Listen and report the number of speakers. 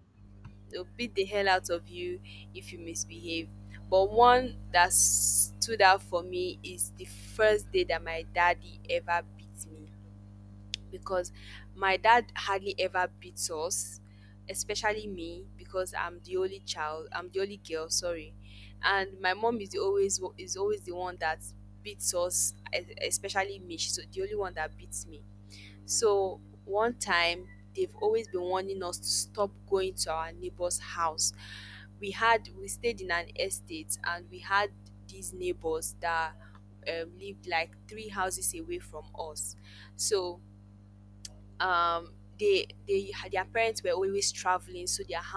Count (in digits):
1